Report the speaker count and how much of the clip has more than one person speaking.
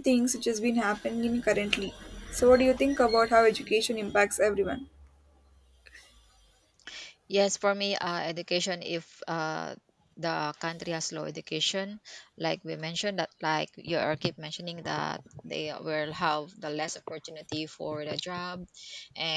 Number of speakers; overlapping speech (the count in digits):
2, no overlap